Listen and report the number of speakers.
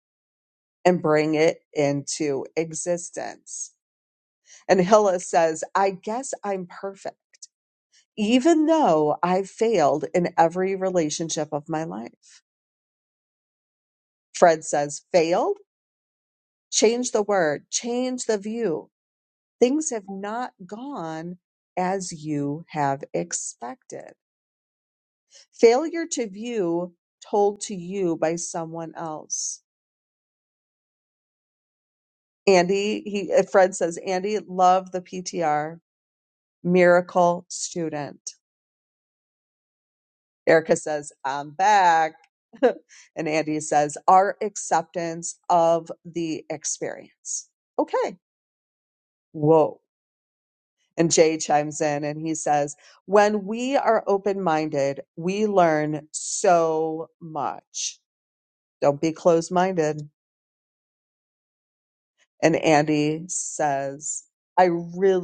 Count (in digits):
1